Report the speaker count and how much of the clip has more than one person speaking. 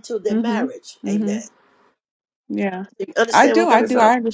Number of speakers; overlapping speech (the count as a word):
two, about 38%